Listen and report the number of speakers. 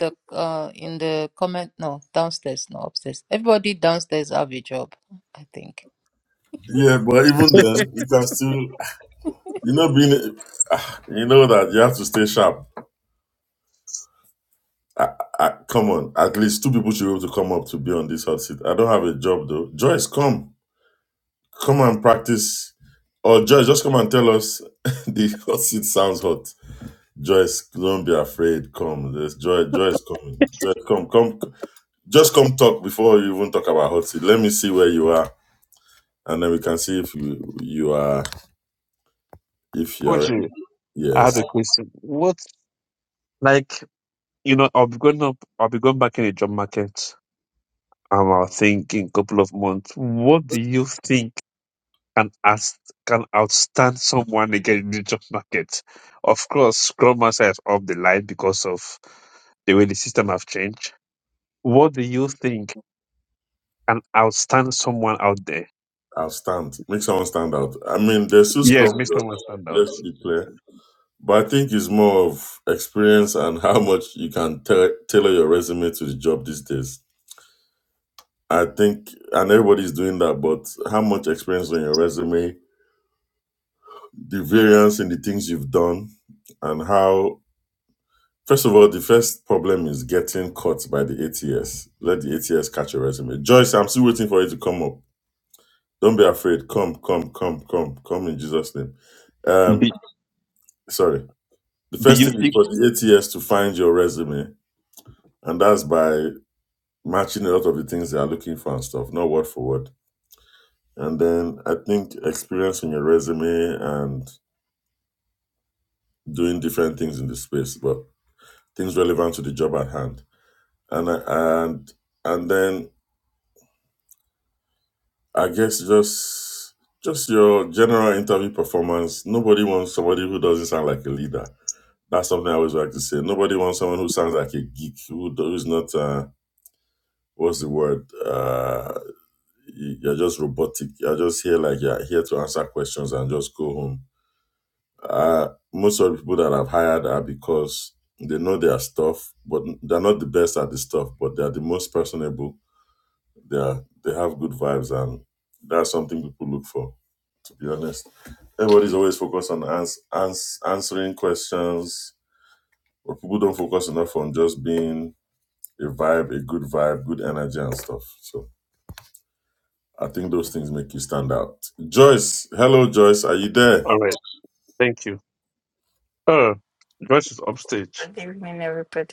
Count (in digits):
4